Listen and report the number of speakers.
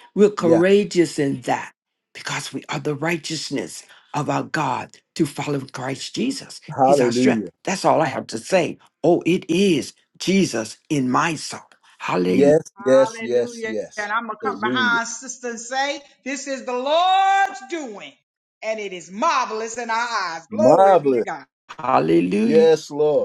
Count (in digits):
3